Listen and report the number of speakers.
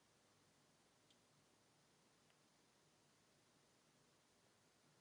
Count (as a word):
zero